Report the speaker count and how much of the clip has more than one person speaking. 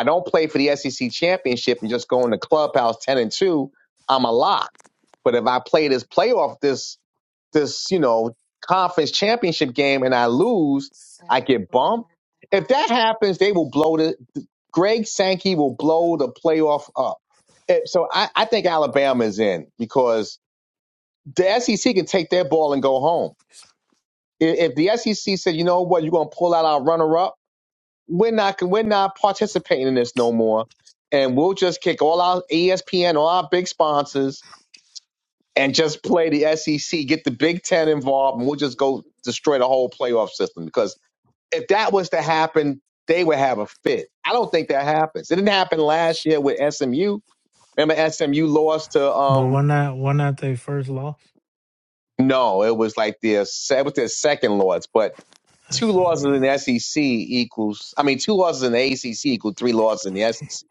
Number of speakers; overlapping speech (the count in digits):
2, about 2%